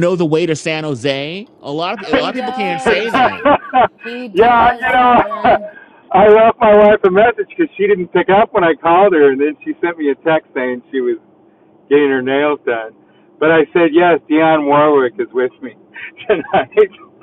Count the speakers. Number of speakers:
3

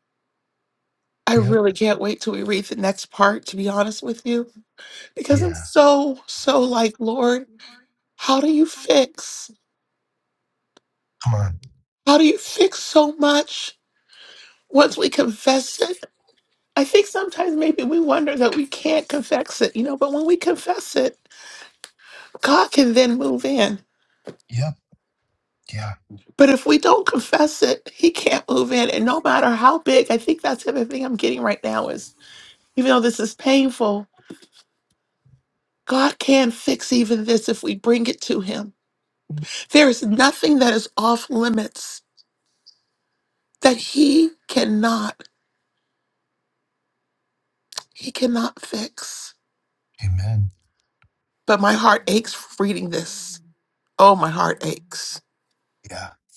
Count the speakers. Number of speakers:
2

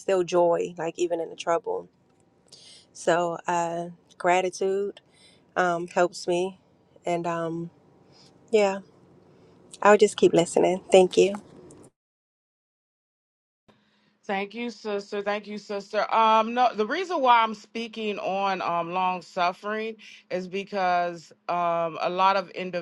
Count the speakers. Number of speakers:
2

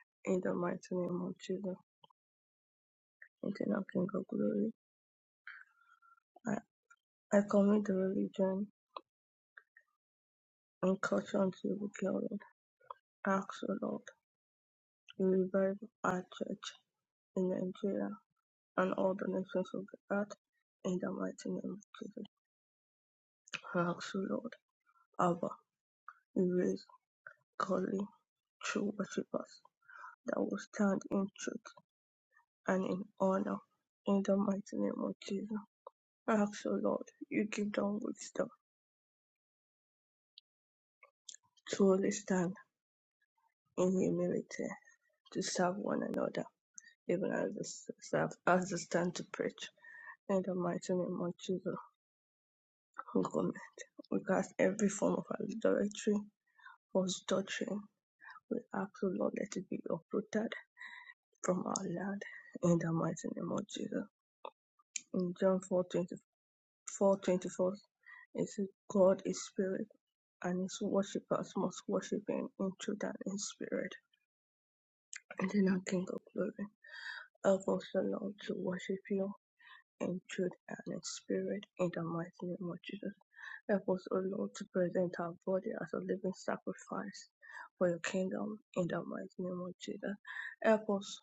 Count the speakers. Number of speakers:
1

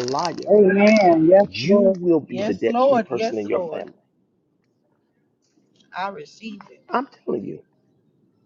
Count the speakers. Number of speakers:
3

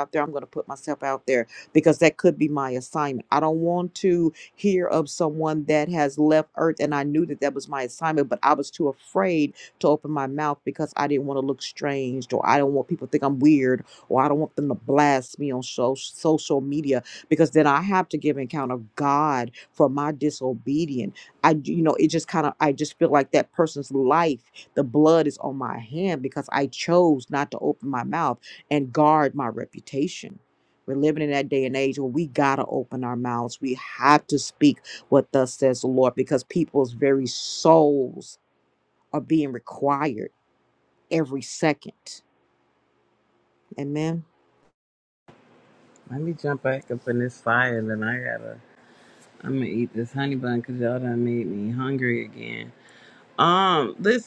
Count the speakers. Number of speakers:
2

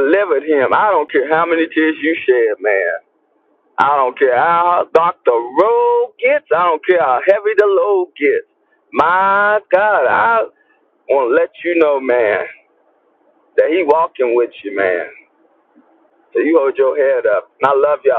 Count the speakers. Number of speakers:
1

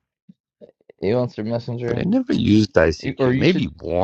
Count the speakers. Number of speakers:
2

